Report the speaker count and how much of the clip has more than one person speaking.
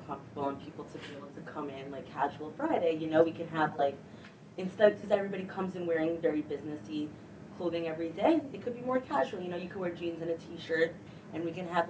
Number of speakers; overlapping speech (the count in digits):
1, no overlap